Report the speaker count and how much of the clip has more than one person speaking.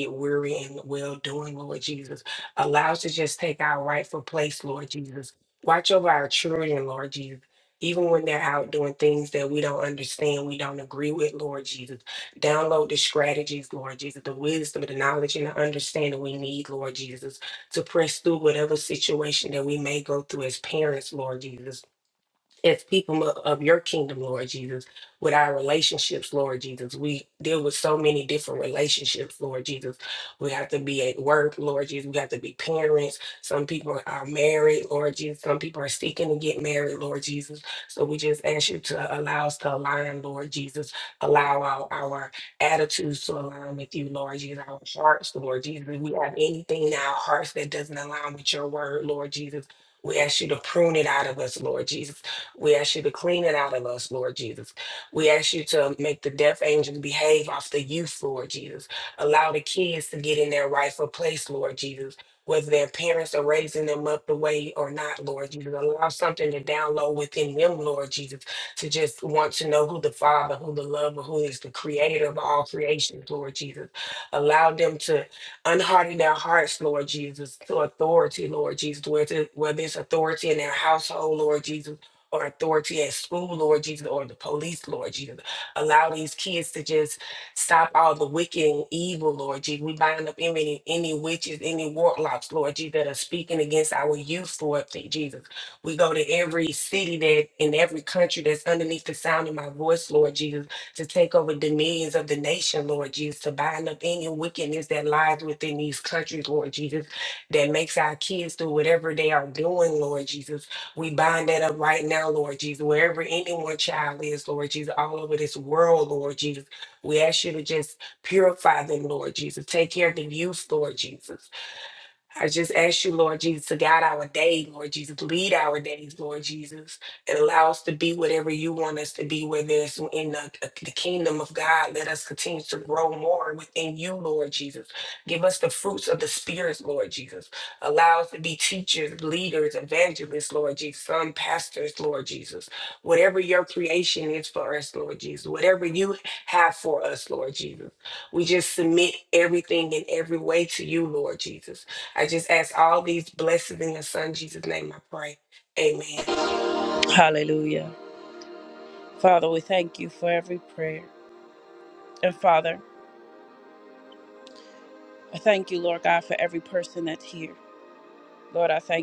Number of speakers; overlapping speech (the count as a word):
two, no overlap